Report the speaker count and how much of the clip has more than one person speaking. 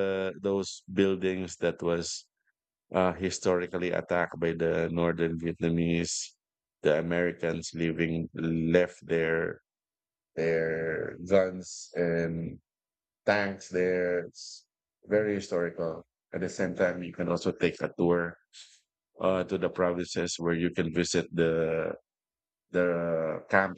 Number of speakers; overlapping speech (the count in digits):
1, no overlap